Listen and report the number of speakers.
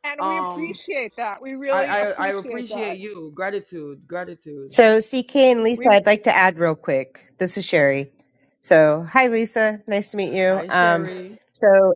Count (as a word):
three